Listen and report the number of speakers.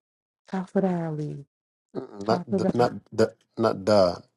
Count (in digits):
2